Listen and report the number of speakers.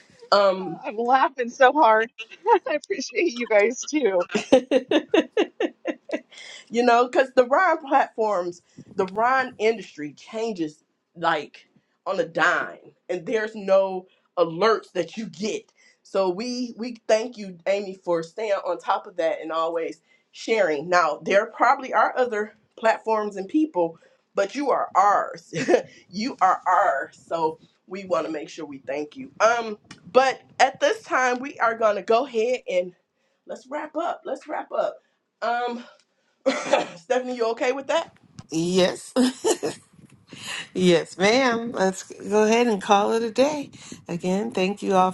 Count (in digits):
3